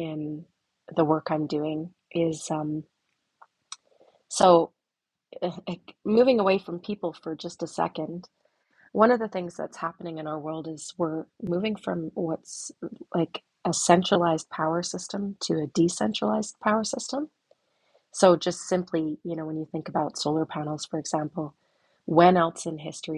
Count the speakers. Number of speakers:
one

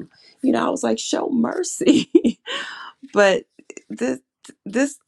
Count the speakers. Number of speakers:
one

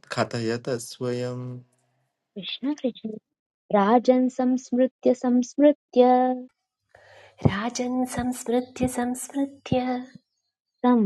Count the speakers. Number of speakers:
three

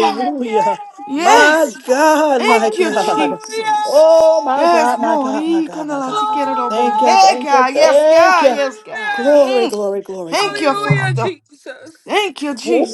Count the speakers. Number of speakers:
three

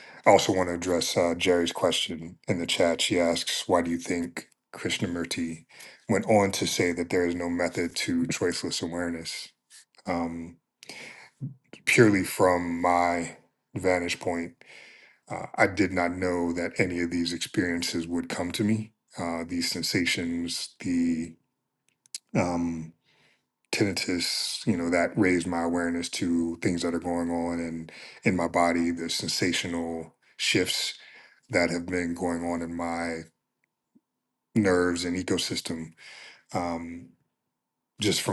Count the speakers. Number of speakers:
one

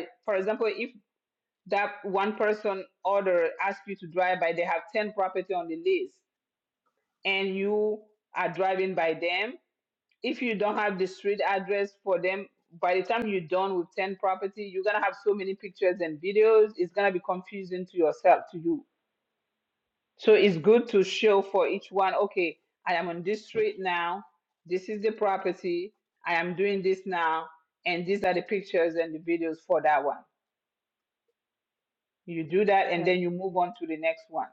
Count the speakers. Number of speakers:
one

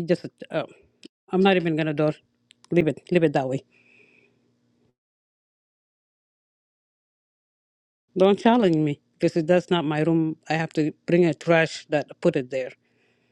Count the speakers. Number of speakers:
one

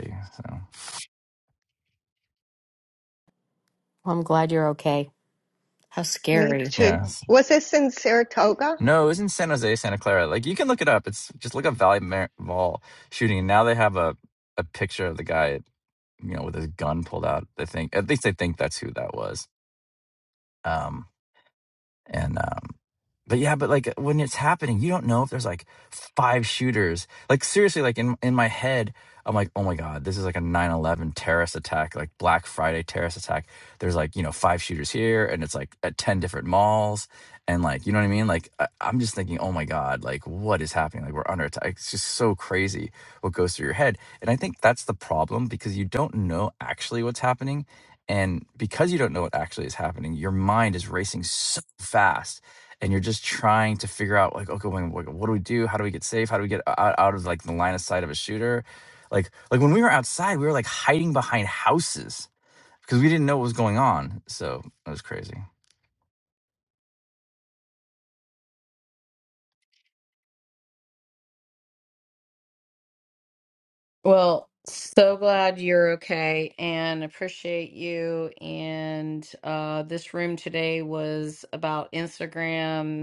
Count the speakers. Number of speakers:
four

